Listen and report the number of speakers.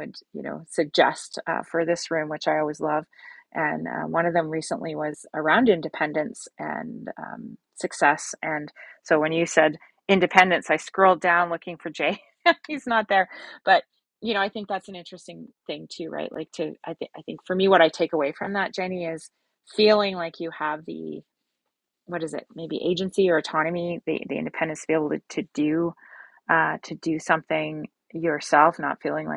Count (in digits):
1